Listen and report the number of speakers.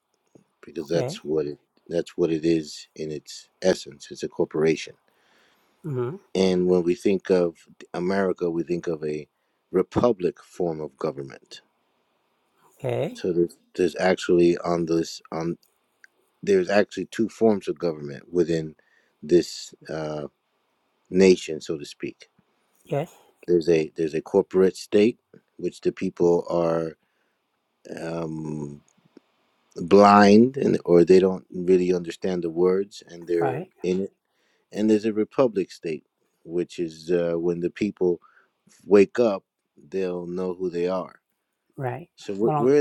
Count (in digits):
2